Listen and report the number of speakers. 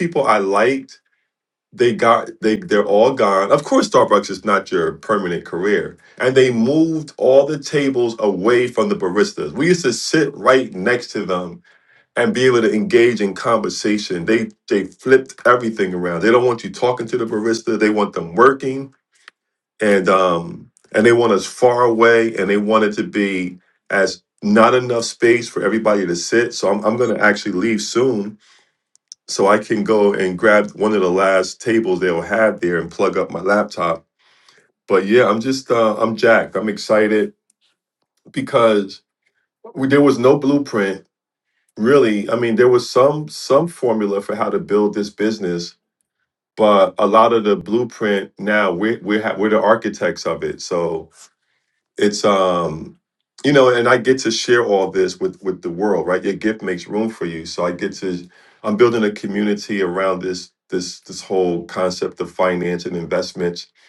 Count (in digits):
1